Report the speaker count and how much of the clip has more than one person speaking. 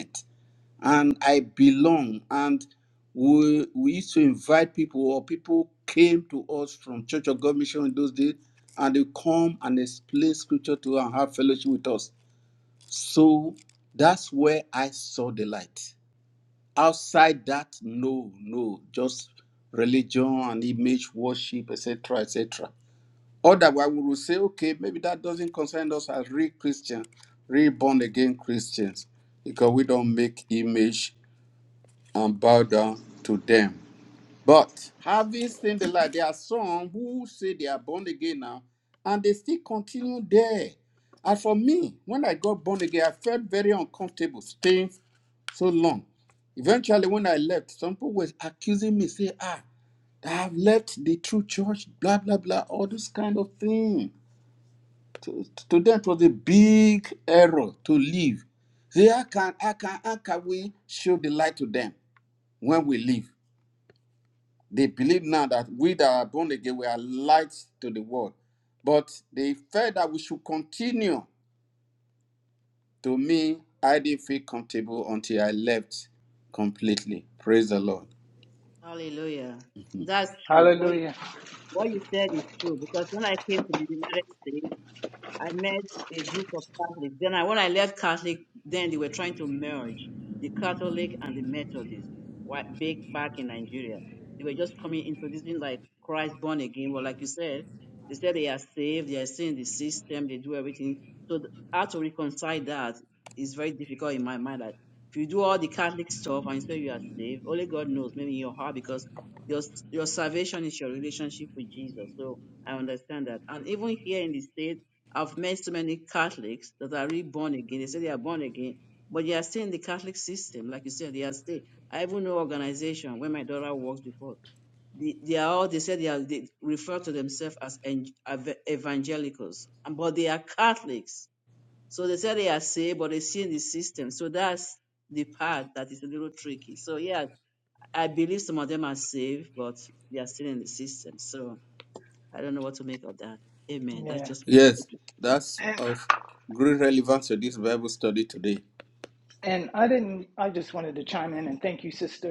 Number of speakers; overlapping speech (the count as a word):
three, about 1%